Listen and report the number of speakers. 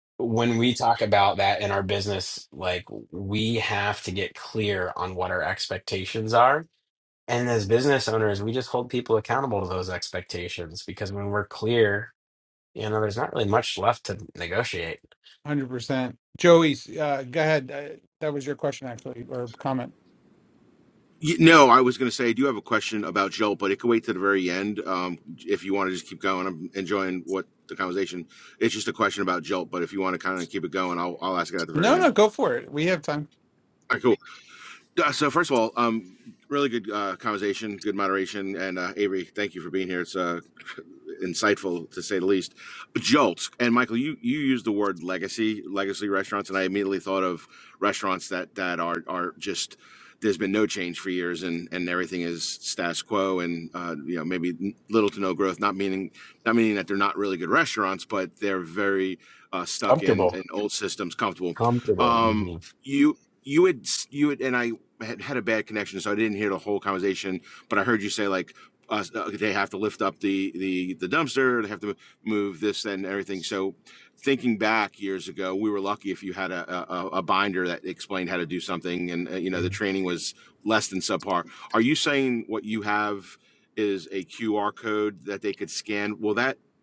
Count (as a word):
three